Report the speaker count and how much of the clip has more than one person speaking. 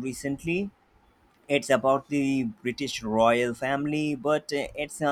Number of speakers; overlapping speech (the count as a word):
one, no overlap